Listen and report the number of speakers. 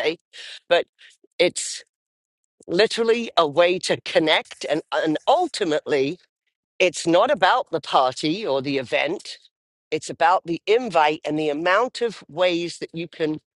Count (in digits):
1